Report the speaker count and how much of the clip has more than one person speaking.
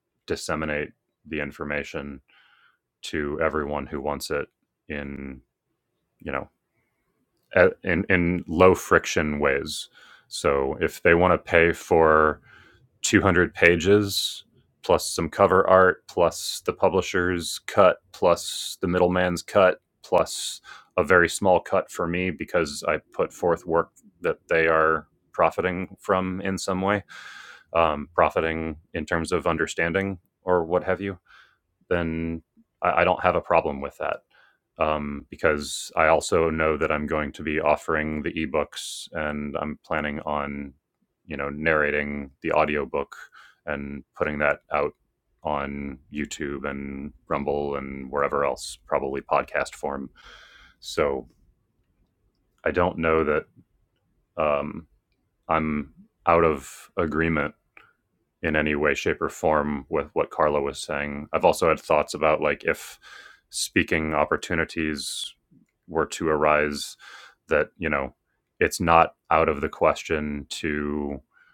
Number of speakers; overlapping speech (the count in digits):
1, no overlap